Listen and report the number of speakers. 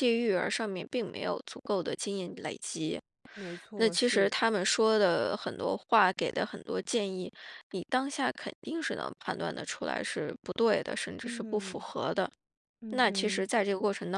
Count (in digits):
2